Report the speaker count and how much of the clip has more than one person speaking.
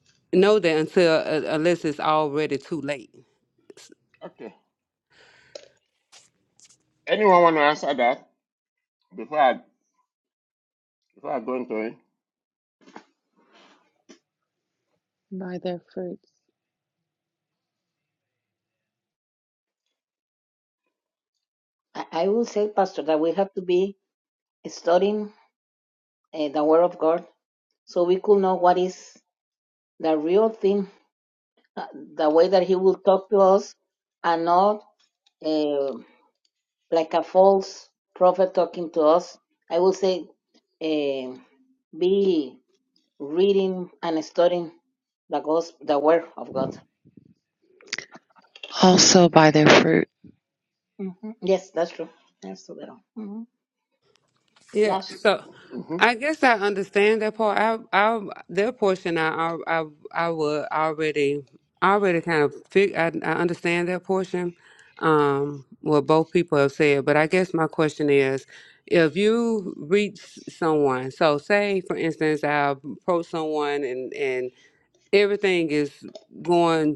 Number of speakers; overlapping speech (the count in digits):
4, under 1%